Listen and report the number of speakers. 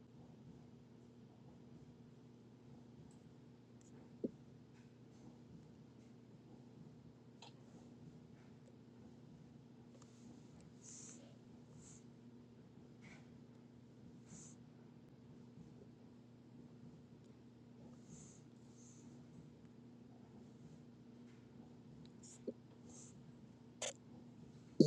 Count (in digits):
0